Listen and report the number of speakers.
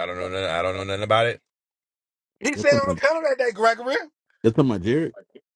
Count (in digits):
3